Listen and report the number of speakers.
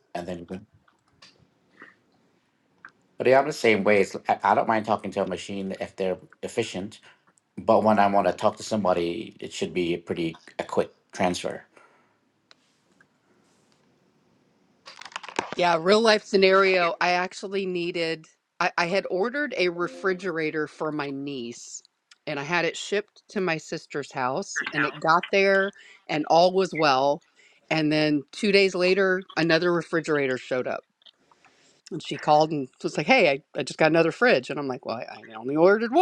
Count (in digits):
2